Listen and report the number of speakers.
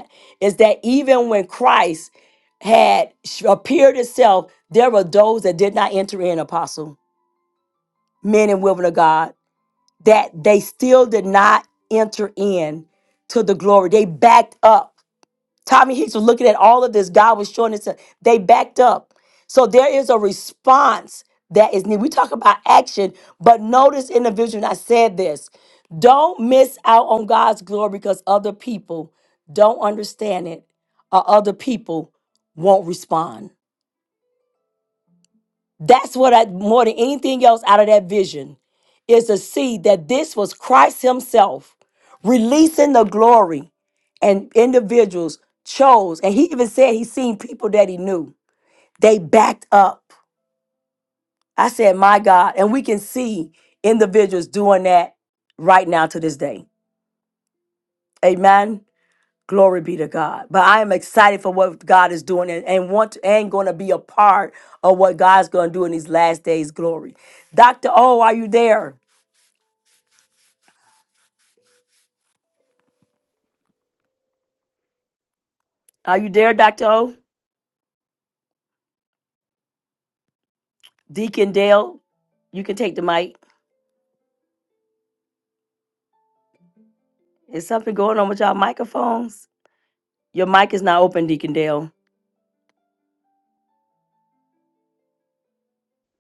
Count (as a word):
one